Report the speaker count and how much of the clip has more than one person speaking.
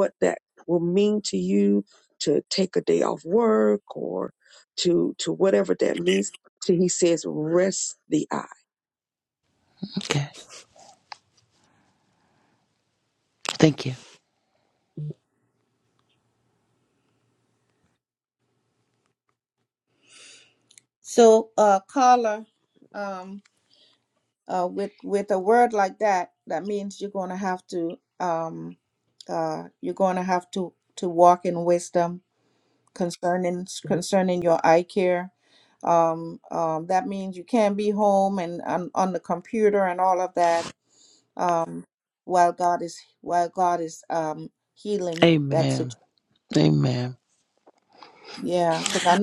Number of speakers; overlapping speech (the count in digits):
3, about 1%